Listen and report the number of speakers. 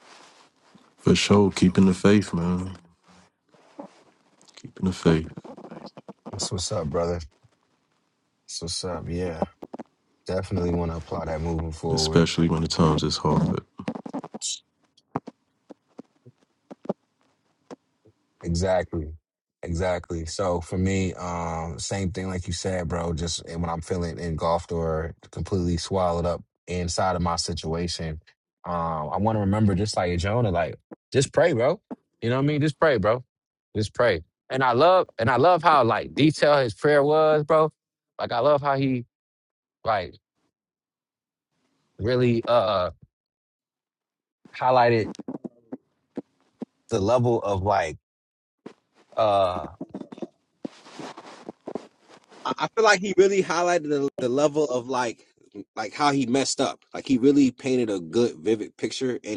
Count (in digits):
2